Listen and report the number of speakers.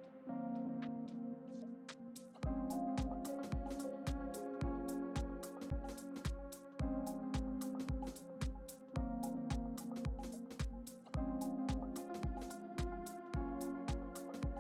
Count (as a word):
zero